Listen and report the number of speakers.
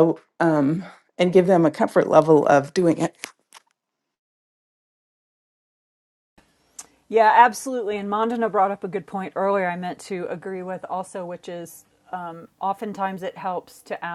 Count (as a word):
two